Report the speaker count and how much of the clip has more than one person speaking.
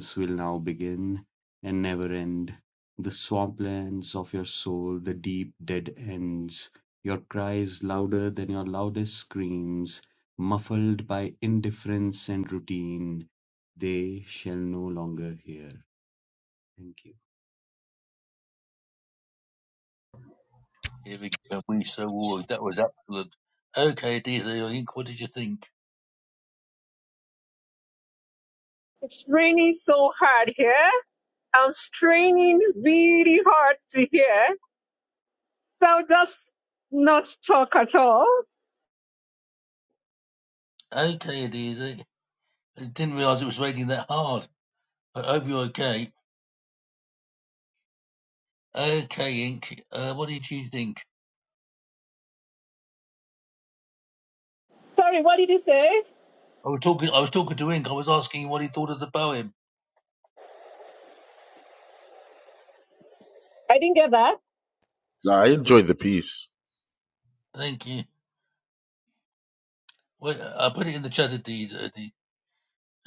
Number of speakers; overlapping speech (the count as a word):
four, under 1%